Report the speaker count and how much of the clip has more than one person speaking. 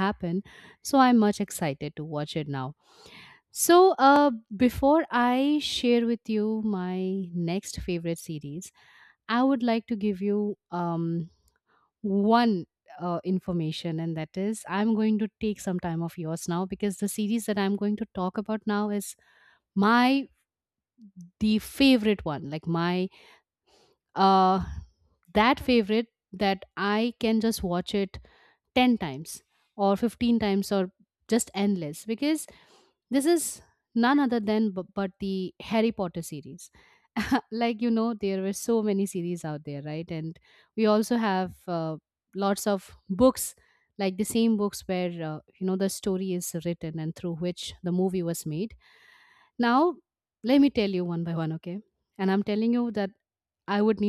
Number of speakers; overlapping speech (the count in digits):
1, no overlap